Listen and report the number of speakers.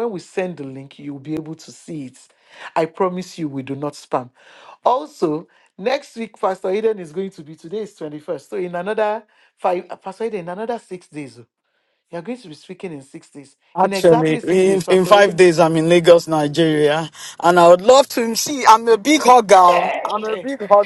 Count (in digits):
2